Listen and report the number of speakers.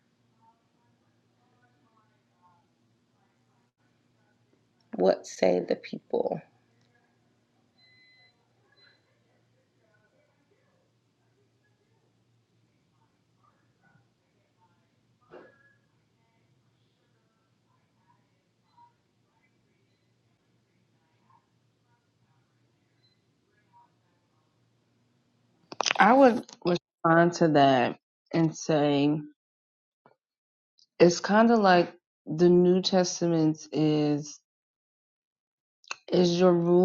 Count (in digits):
2